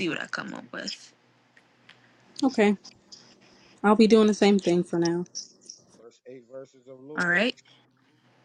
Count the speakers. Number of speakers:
three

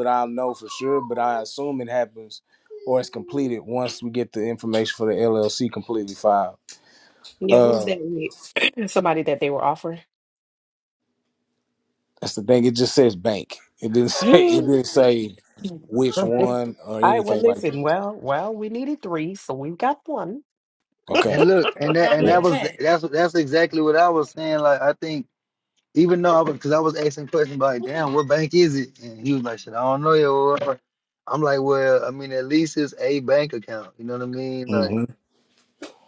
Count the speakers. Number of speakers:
three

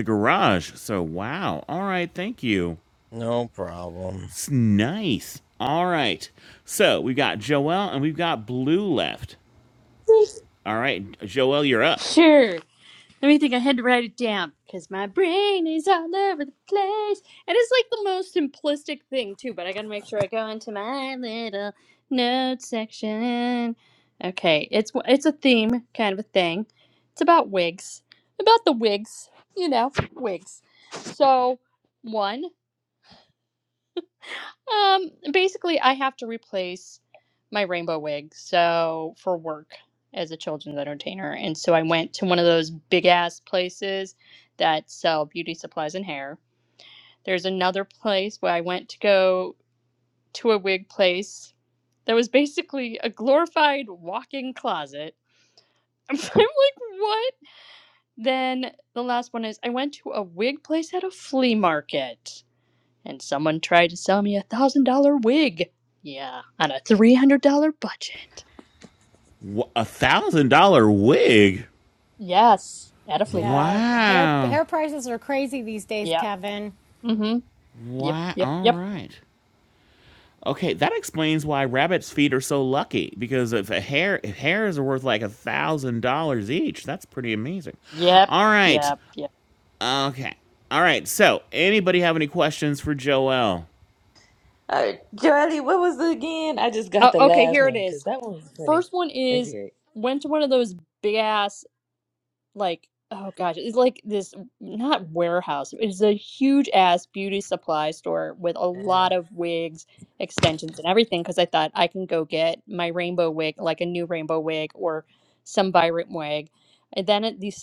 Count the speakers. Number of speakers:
five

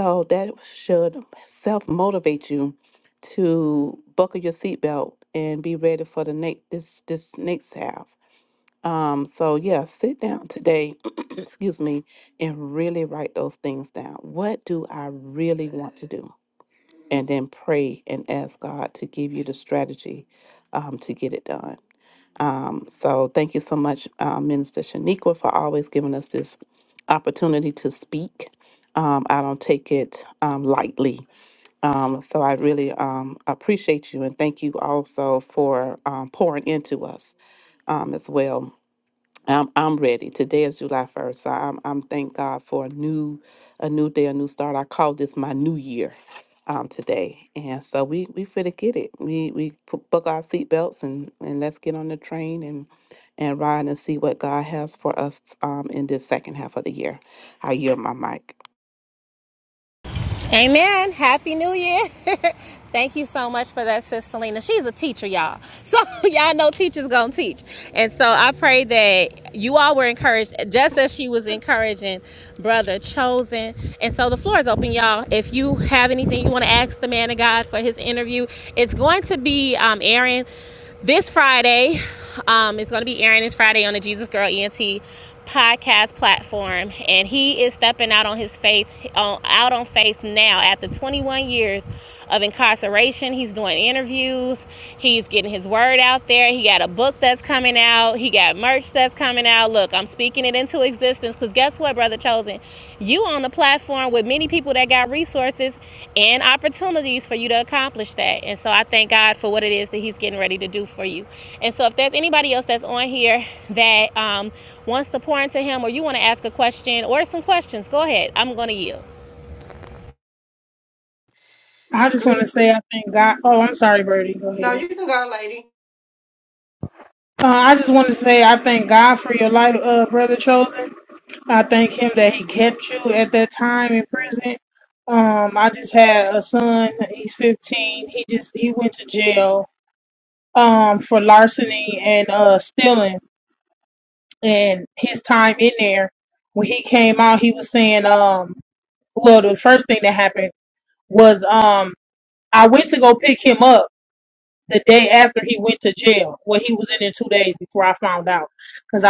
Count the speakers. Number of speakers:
four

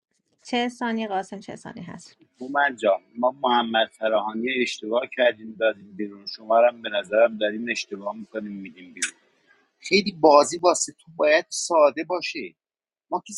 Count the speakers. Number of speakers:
two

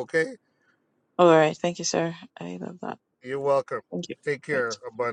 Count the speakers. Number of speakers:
two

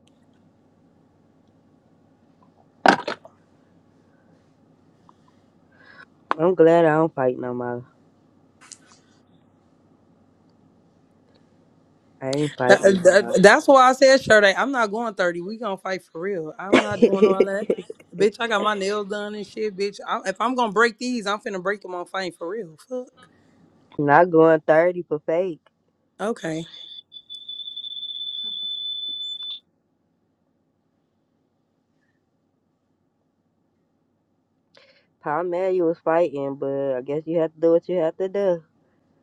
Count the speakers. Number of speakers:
two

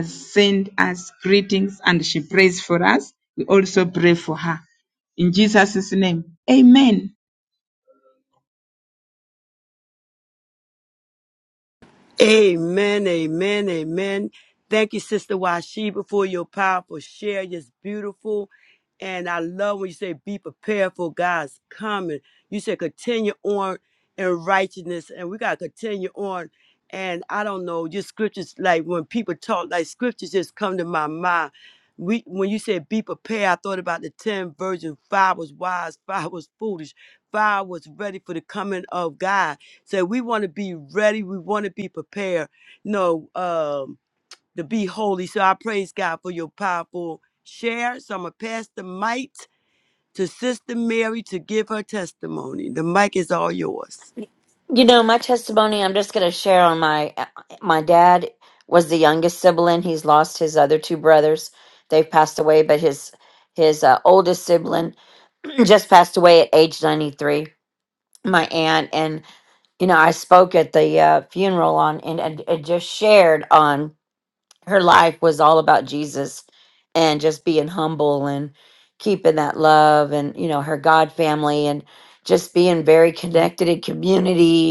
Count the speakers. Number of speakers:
three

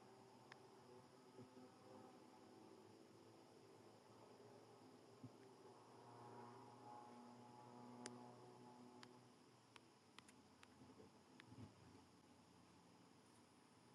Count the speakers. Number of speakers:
zero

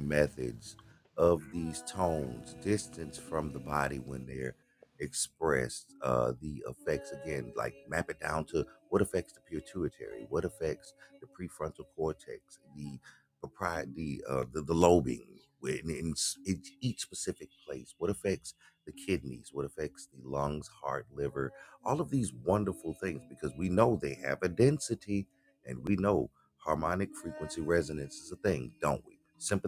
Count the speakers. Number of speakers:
one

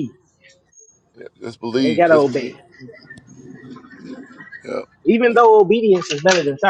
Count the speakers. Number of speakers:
two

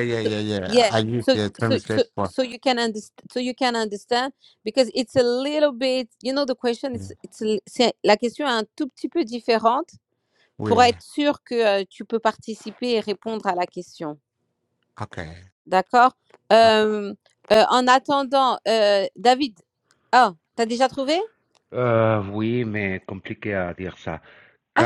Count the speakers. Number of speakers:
three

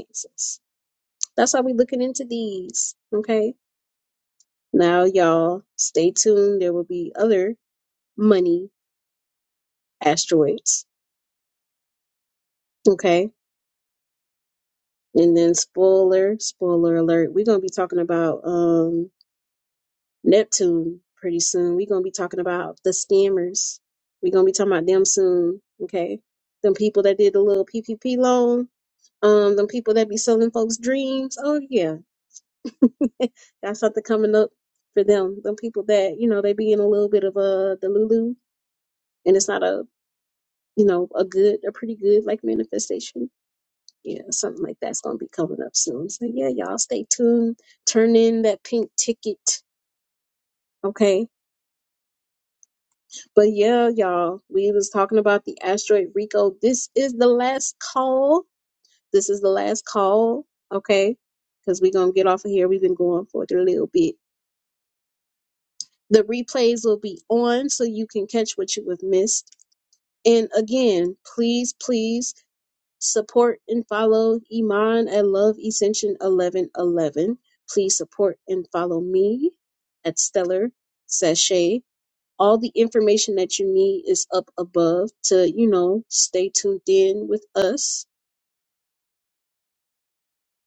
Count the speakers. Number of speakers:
one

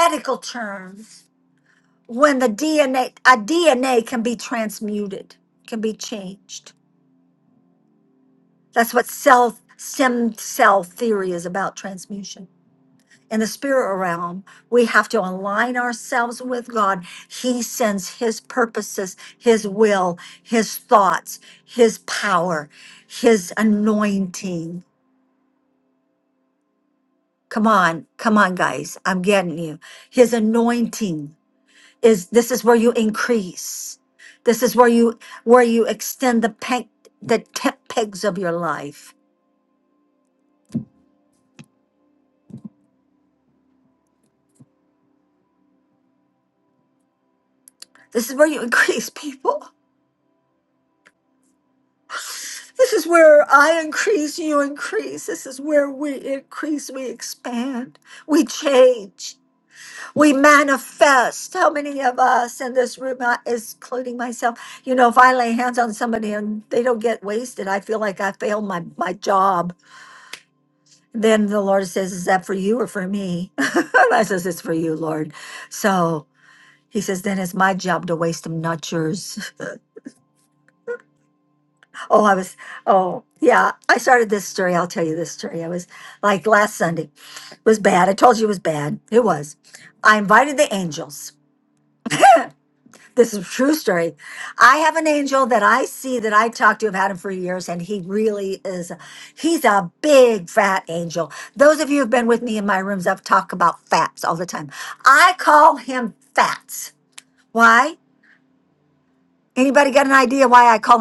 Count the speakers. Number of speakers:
one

